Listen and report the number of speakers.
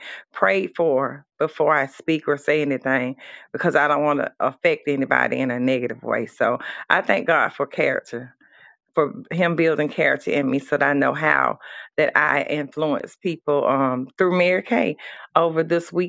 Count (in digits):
1